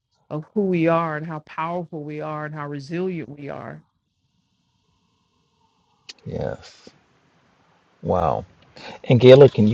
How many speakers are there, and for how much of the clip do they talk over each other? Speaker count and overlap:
2, no overlap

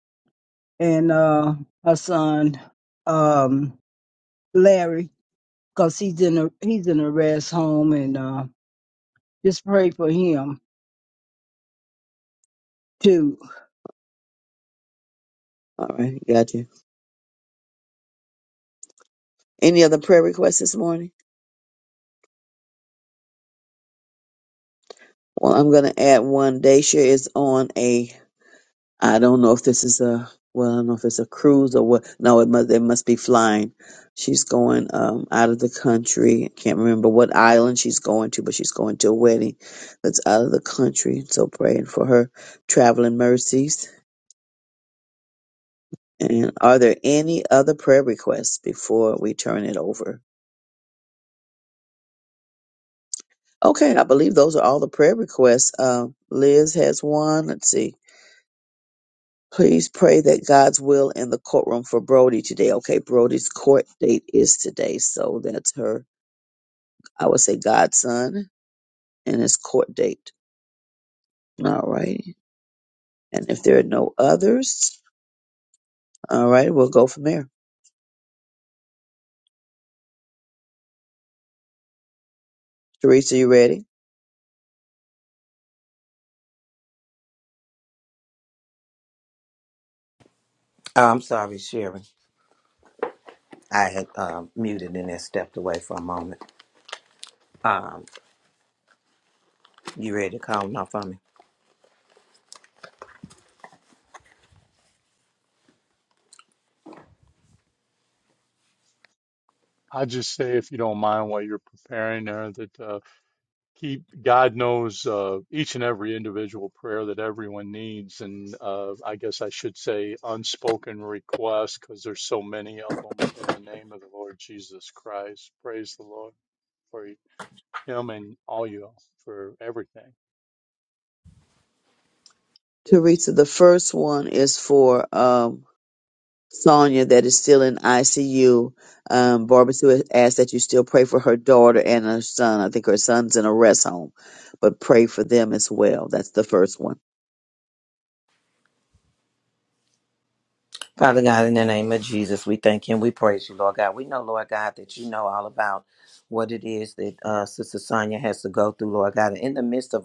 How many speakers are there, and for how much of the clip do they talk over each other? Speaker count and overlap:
4, no overlap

